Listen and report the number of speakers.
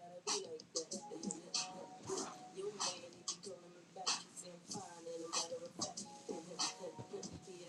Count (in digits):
0